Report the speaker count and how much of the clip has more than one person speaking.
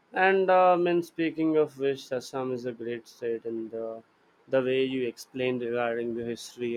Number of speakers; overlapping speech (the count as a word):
one, no overlap